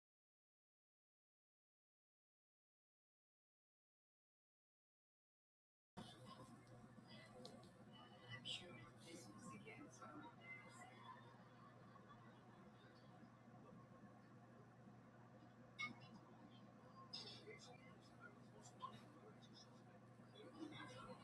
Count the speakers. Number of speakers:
zero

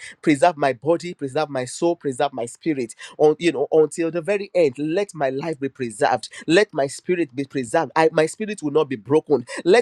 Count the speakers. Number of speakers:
one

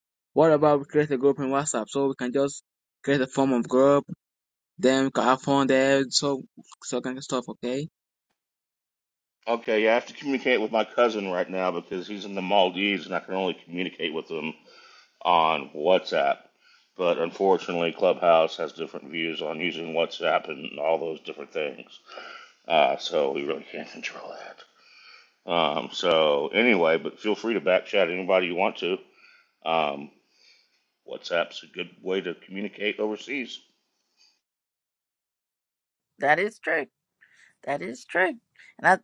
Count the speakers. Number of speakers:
three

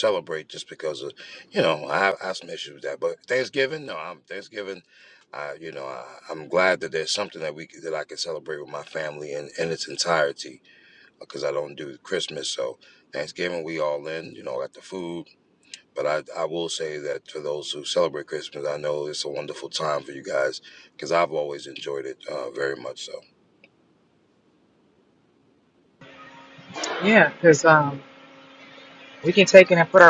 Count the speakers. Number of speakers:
two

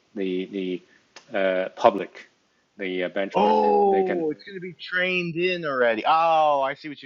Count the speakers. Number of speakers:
two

